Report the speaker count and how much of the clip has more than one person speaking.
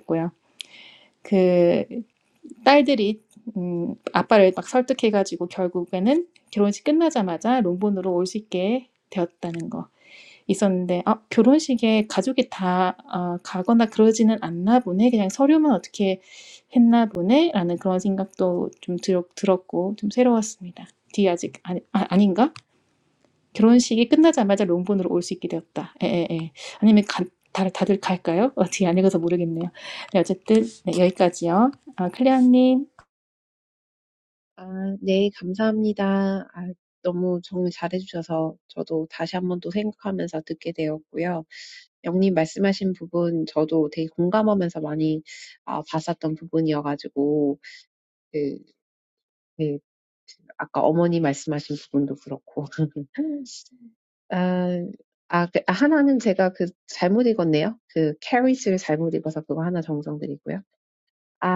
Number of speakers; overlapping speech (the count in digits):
2, no overlap